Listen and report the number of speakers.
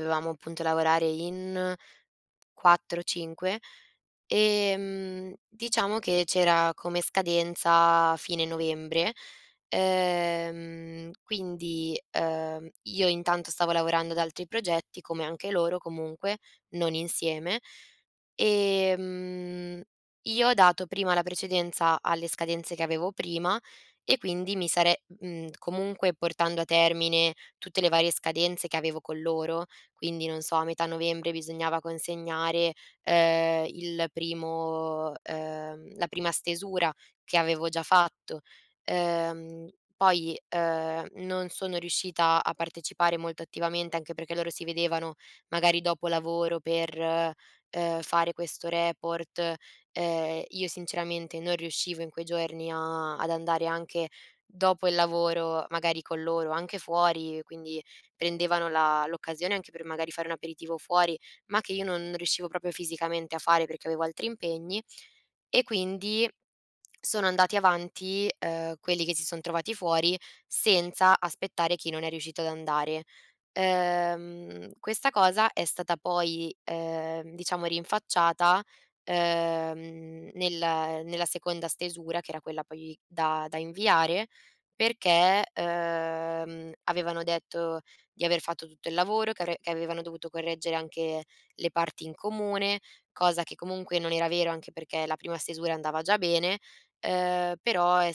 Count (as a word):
one